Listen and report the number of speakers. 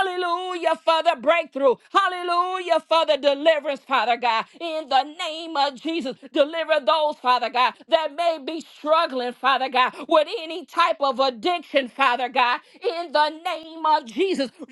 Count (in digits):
1